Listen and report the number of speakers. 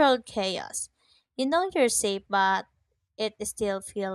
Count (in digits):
1